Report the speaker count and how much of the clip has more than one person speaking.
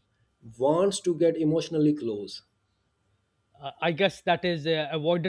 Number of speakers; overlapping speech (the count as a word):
two, no overlap